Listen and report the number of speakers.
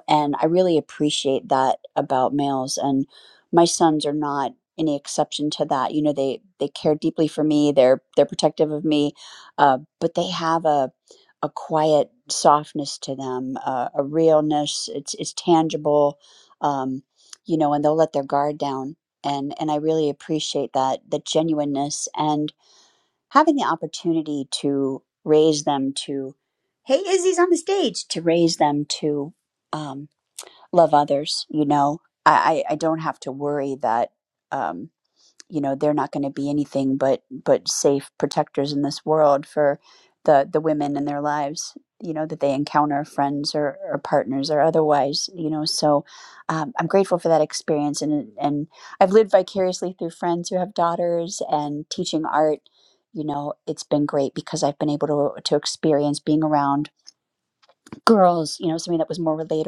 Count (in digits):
1